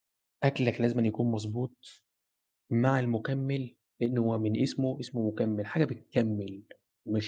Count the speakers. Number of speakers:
1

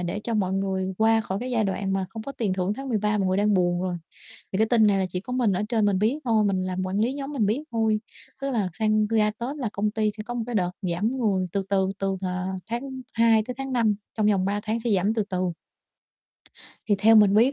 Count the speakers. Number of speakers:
1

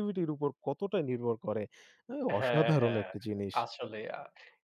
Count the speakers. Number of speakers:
2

